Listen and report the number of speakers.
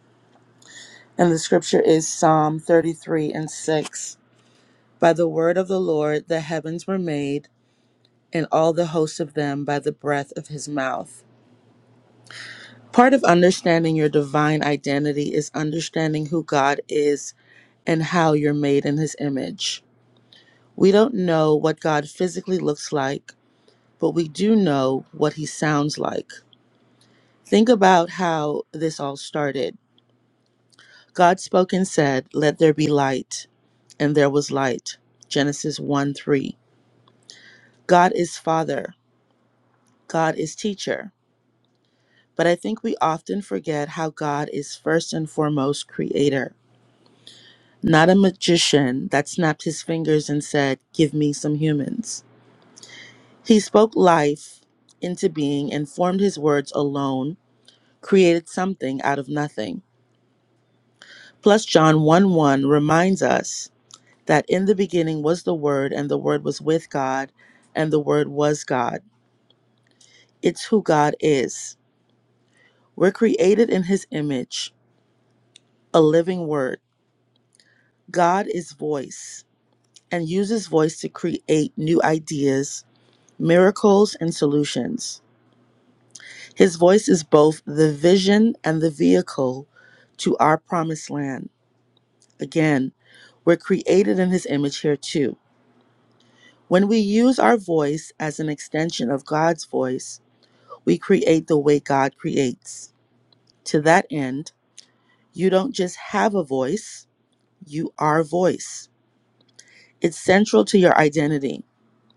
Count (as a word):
one